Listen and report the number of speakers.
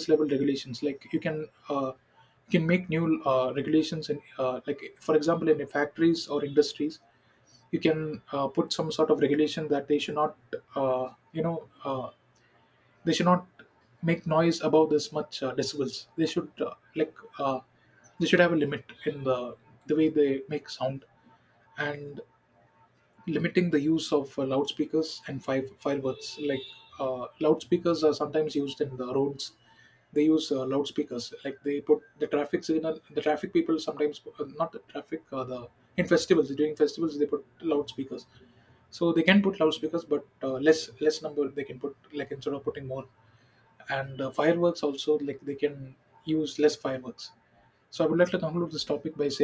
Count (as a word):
one